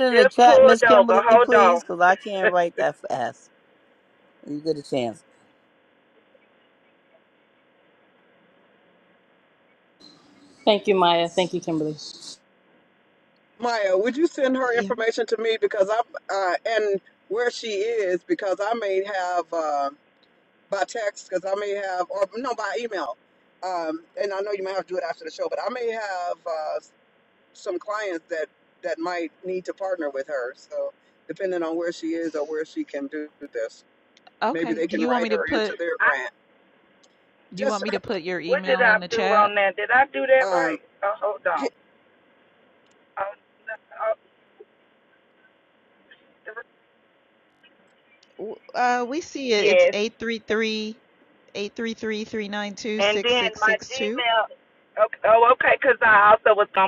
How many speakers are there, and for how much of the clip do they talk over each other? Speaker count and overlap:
5, about 12%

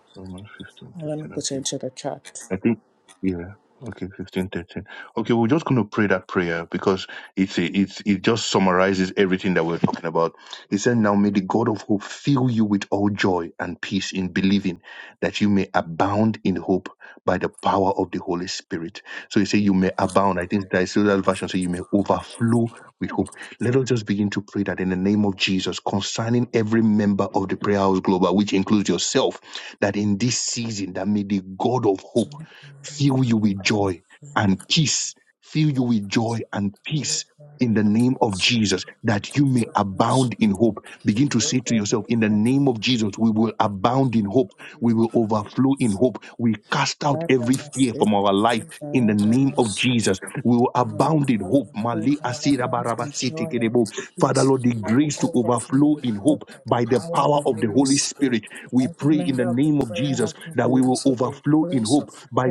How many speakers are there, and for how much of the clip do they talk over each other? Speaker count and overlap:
2, about 21%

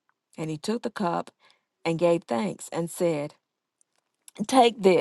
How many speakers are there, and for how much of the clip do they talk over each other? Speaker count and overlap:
1, no overlap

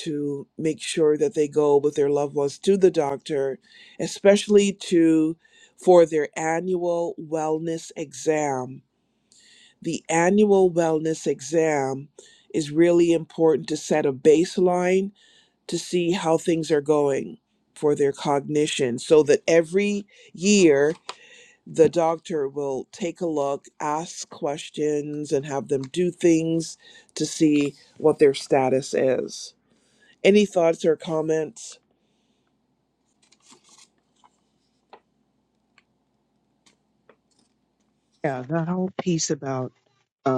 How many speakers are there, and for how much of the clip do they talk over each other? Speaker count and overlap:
2, no overlap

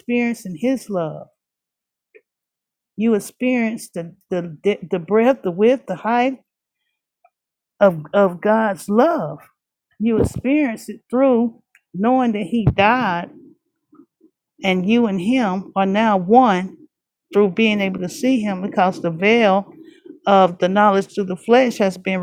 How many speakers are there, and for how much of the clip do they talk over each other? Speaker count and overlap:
1, no overlap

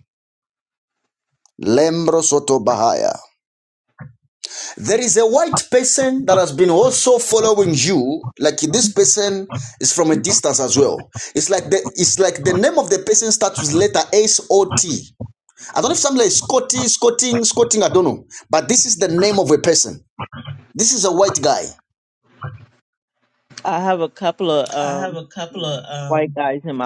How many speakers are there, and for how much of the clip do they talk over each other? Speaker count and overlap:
2, no overlap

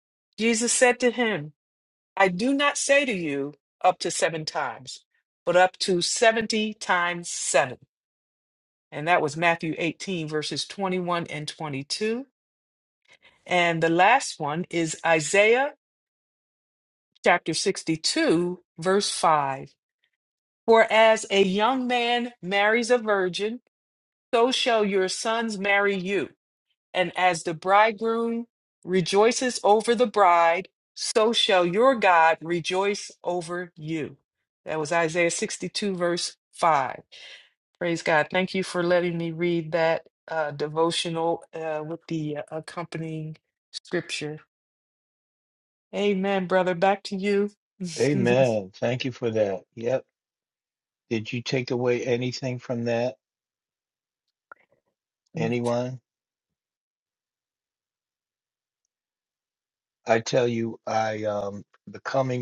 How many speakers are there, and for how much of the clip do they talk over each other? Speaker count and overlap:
2, no overlap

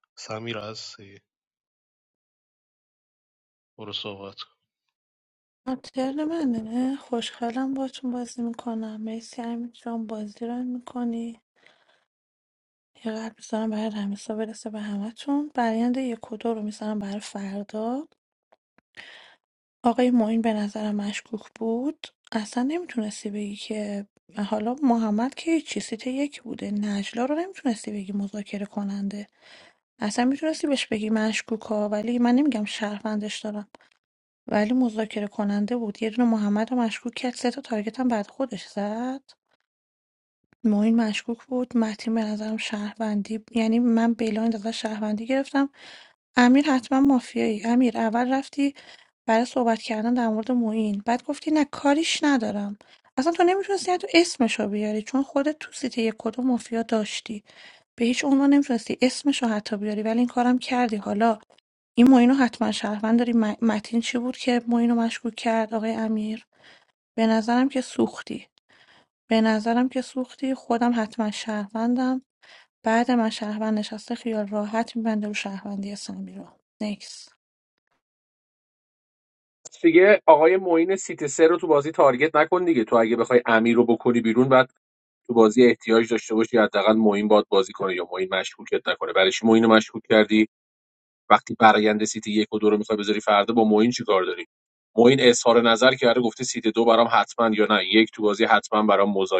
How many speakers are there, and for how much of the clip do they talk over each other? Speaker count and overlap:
3, no overlap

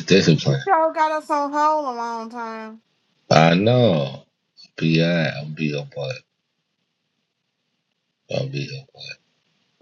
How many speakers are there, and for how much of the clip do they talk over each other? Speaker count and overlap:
2, about 2%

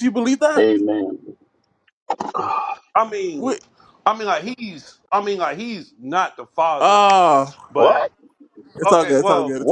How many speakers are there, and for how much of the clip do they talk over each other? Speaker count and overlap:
3, about 16%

